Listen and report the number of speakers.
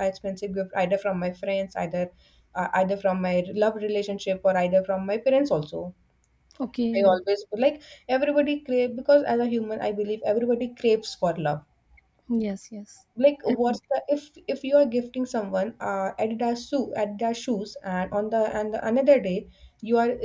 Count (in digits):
2